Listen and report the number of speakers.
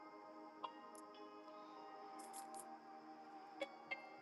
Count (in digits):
0